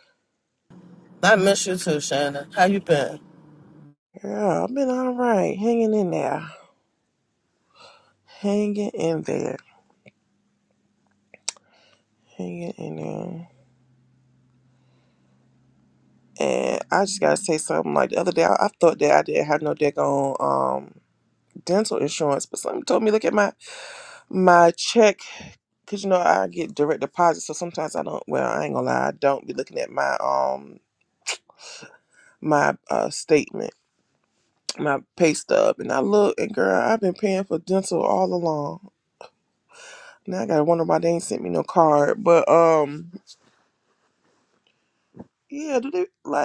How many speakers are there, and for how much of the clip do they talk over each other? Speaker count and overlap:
2, no overlap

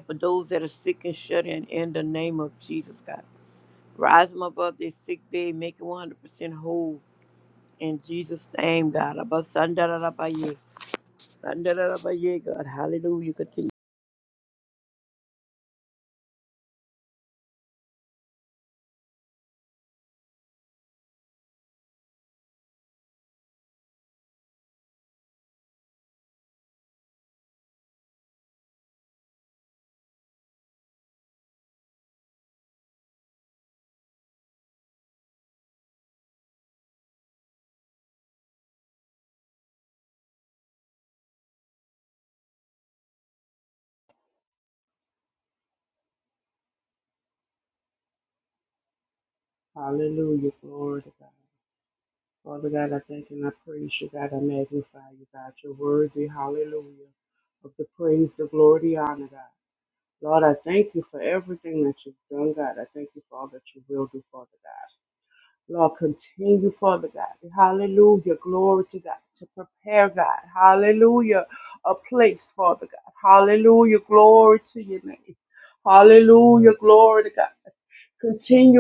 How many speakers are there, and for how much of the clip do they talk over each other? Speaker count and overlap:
2, no overlap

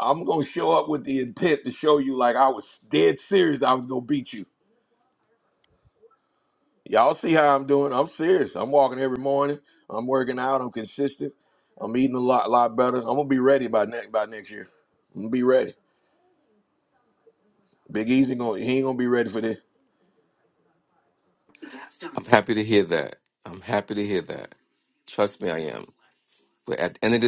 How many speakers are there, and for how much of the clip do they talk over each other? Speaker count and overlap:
2, no overlap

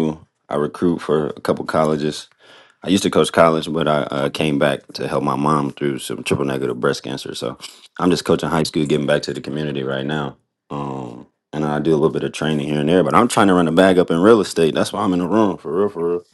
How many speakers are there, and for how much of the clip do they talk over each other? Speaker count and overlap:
1, no overlap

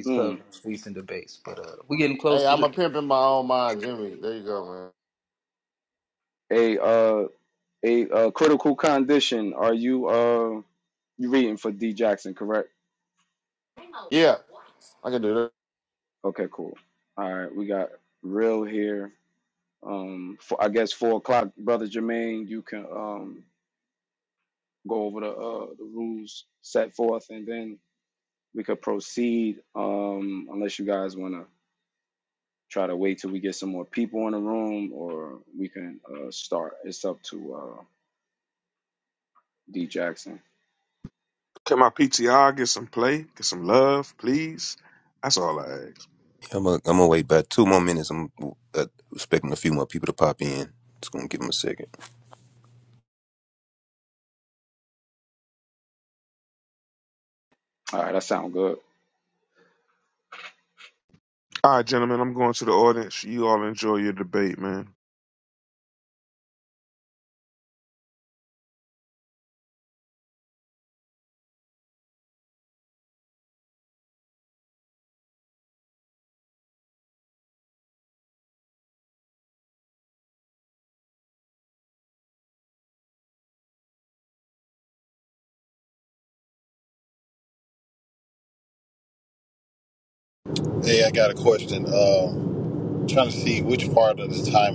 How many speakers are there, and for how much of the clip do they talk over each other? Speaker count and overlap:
6, about 1%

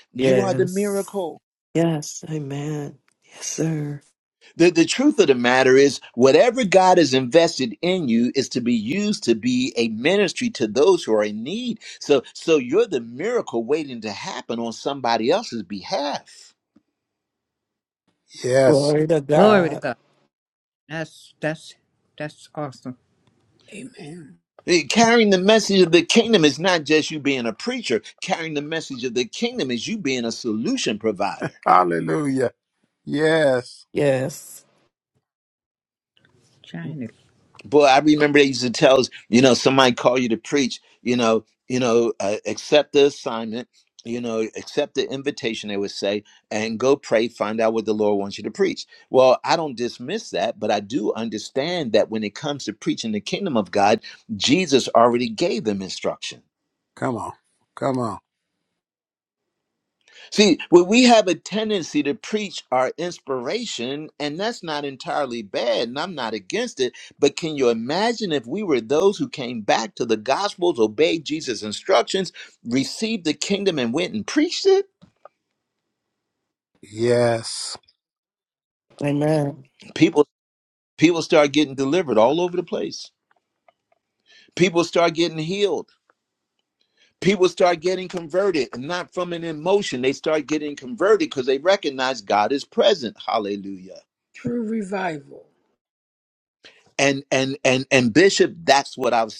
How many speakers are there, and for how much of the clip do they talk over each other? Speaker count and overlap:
6, about 1%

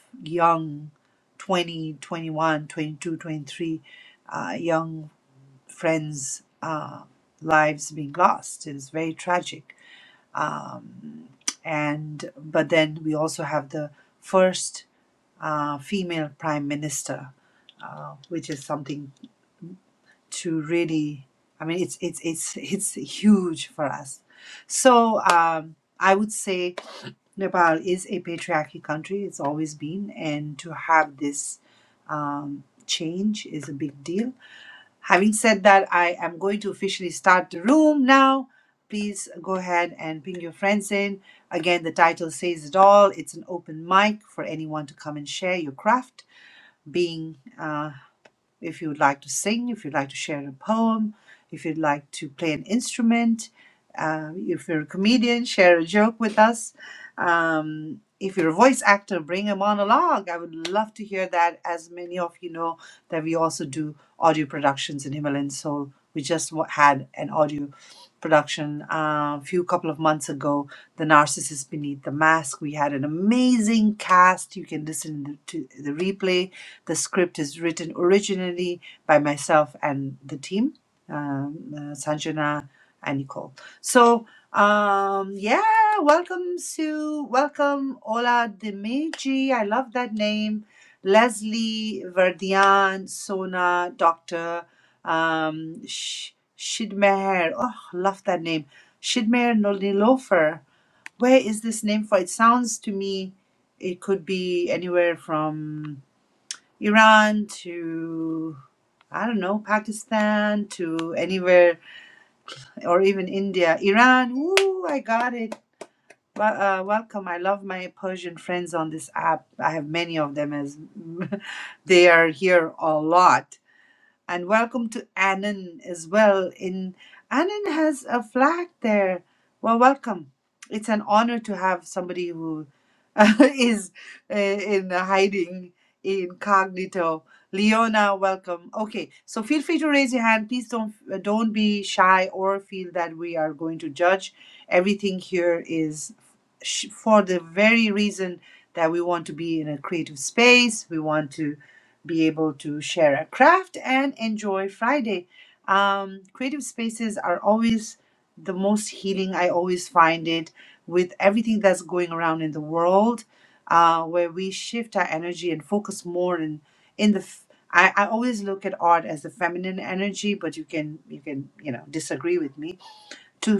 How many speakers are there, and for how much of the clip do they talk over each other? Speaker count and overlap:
1, no overlap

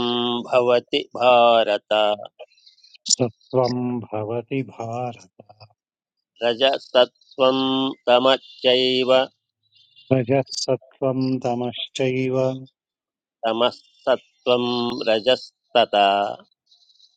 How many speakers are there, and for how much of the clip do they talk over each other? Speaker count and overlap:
2, no overlap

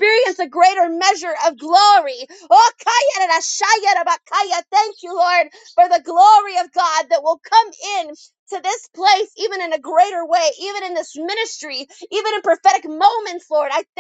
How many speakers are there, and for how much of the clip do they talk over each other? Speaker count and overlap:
1, no overlap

